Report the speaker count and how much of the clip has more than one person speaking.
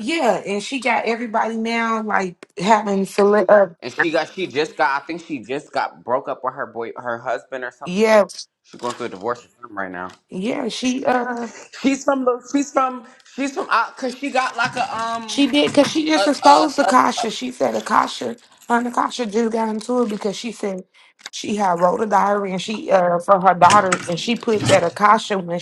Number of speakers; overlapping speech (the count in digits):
2, about 6%